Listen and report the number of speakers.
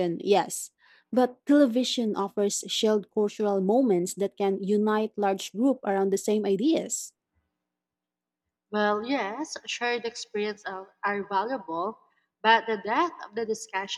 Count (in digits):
2